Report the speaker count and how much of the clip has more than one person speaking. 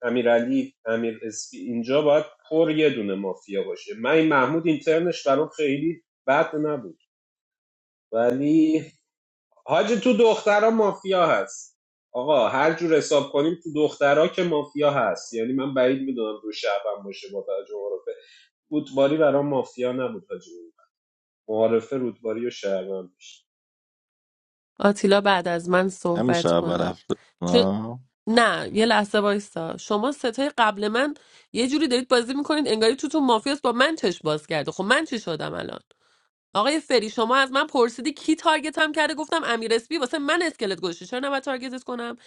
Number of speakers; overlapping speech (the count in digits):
3, about 2%